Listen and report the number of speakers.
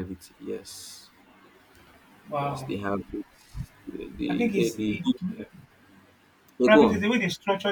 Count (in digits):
2